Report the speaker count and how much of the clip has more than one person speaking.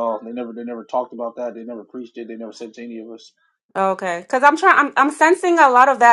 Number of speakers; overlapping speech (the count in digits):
2, no overlap